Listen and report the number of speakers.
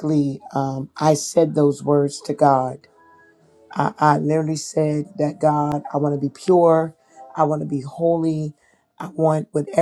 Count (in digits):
1